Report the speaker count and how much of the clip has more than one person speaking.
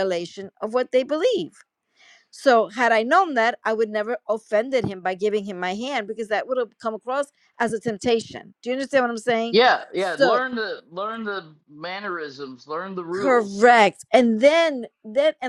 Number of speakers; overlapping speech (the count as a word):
two, about 4%